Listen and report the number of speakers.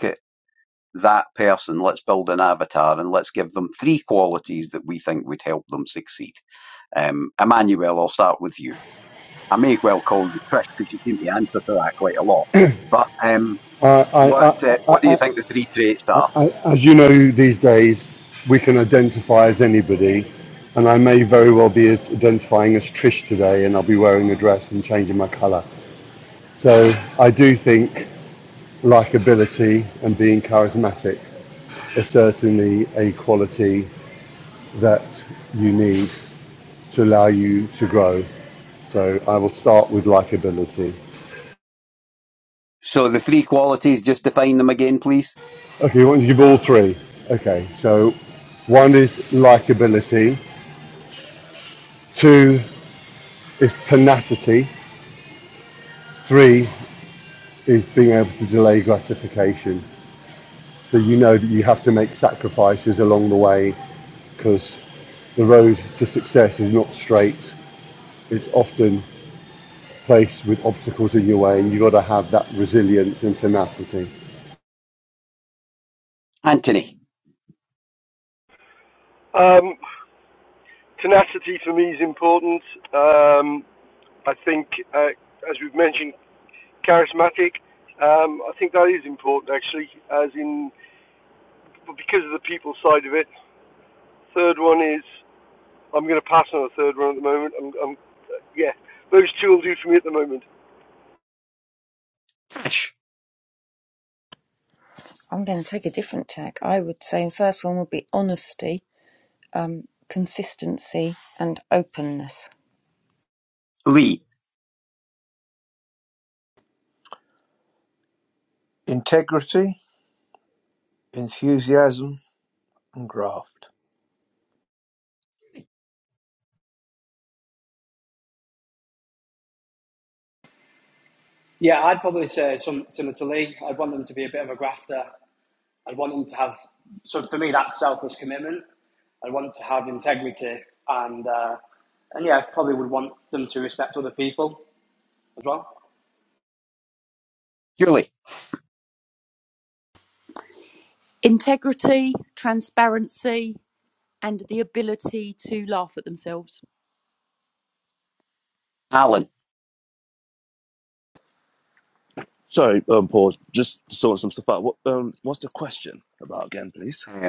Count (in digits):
8